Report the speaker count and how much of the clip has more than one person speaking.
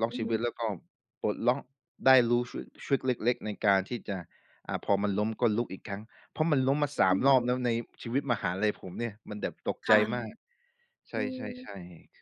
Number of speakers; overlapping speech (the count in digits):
2, about 8%